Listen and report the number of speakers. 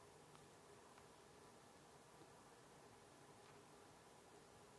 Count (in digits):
0